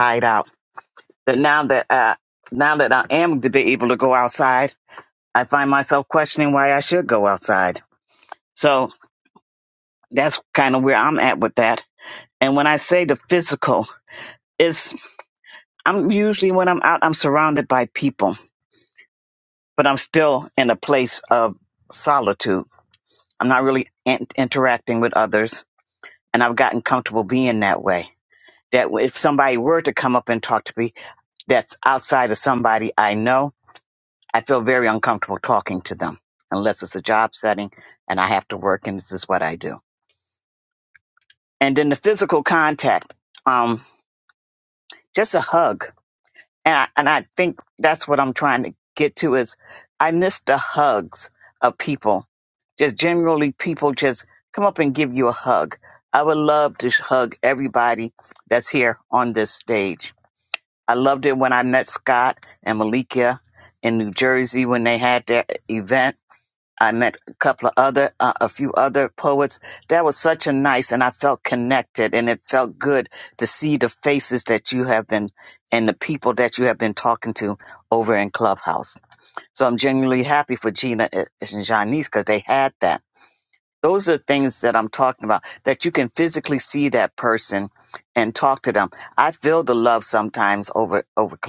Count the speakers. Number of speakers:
one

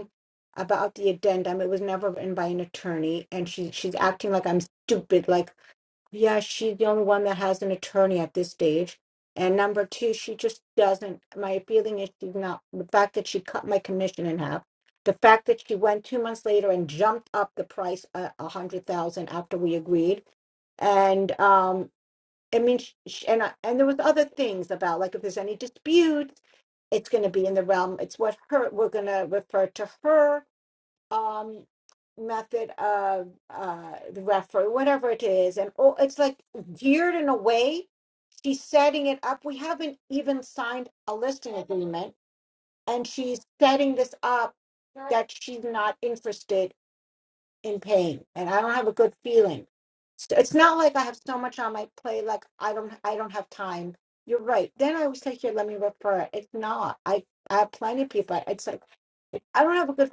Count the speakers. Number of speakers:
one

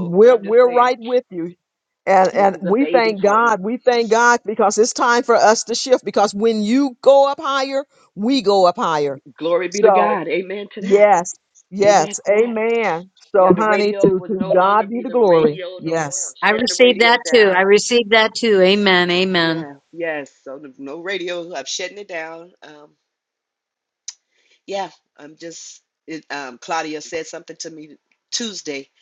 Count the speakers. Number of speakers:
three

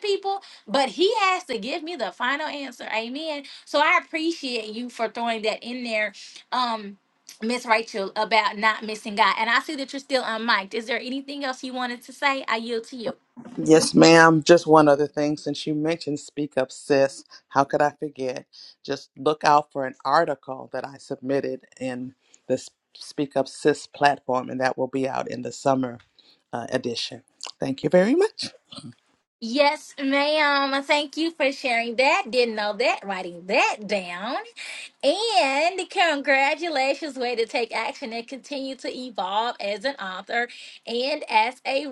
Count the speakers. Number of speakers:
two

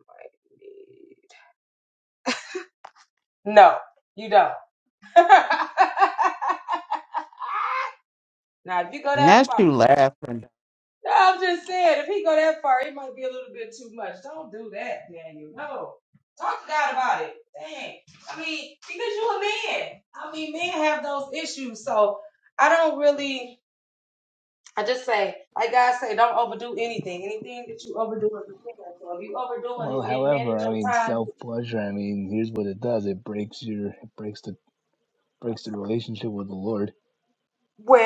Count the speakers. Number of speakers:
three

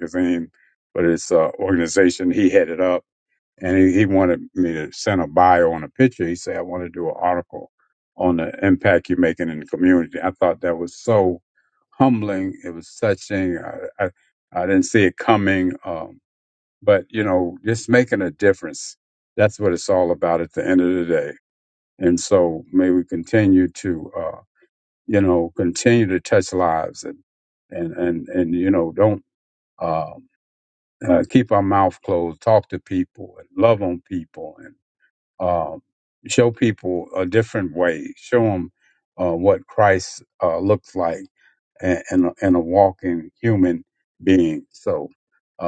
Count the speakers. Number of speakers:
one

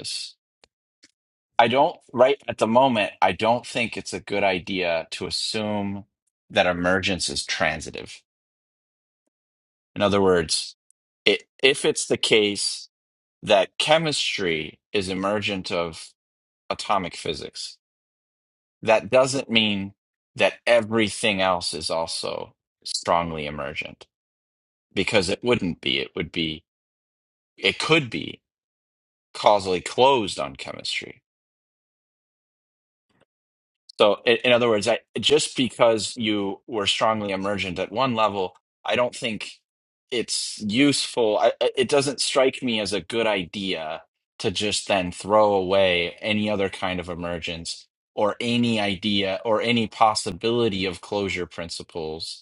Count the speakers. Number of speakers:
one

